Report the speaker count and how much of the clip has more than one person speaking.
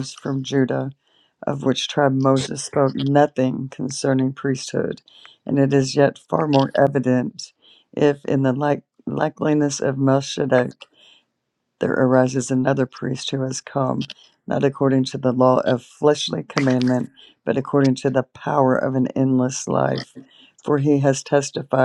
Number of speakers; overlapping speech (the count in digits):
1, no overlap